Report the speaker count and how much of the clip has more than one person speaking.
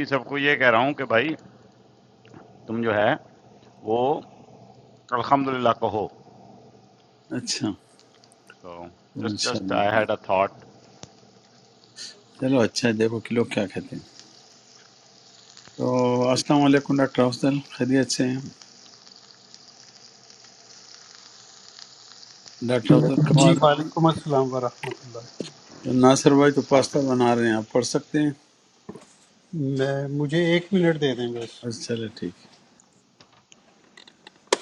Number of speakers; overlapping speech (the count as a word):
three, about 5%